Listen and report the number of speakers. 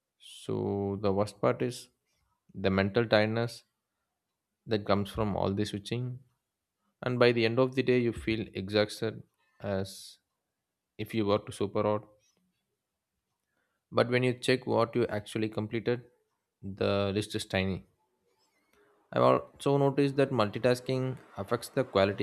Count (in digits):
1